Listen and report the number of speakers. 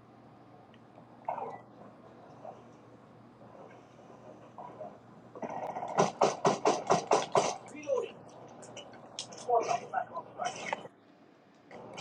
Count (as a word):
zero